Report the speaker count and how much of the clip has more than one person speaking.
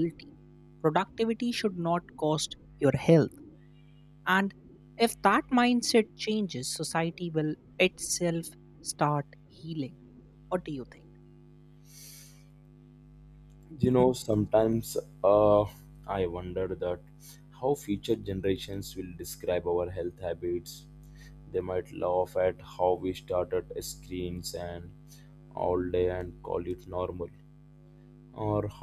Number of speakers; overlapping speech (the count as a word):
two, no overlap